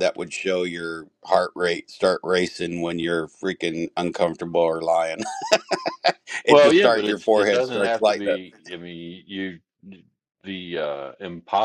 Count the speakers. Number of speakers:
2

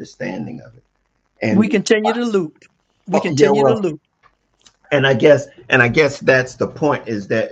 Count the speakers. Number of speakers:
2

